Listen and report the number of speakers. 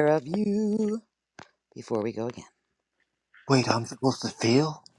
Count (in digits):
2